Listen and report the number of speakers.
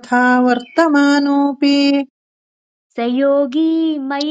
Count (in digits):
2